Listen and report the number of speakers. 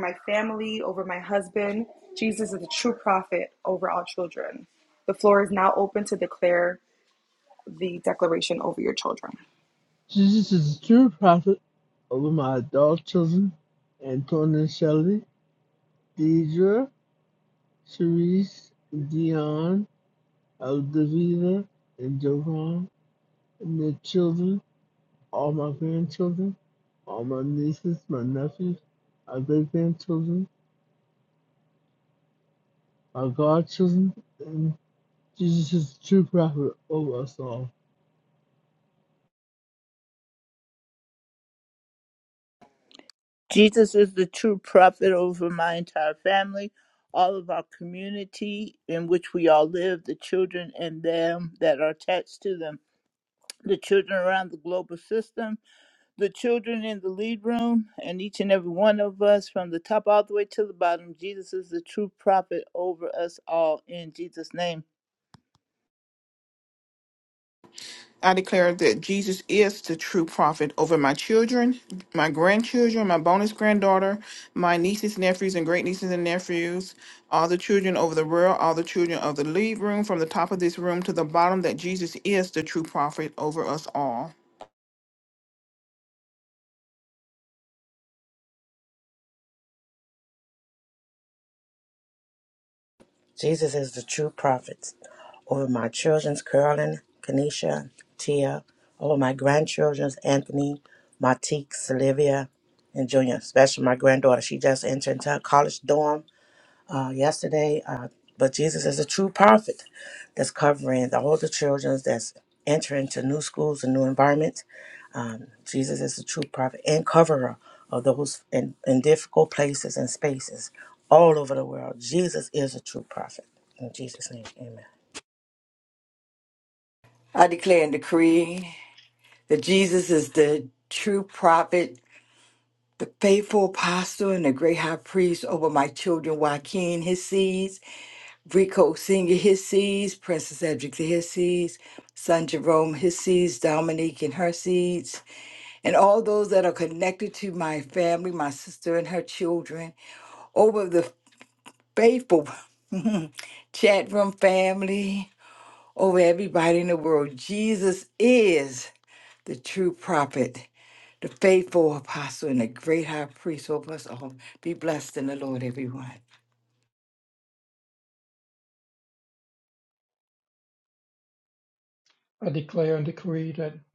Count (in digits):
7